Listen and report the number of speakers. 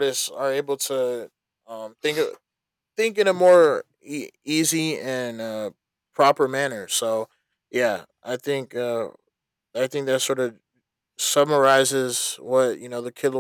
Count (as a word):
one